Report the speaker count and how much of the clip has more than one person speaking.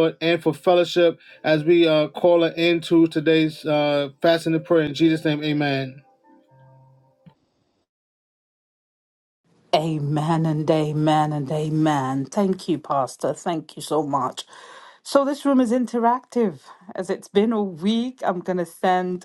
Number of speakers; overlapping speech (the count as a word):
two, no overlap